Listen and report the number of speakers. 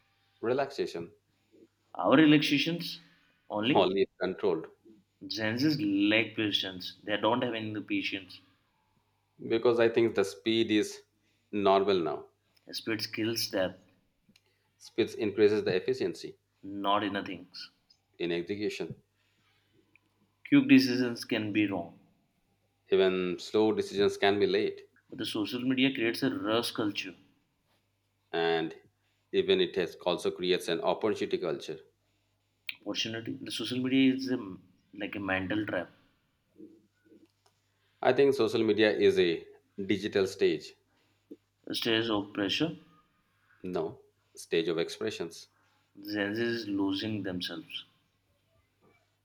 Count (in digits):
2